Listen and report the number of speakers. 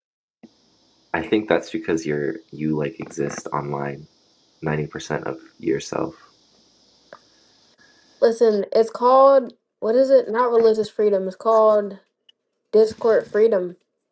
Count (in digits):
2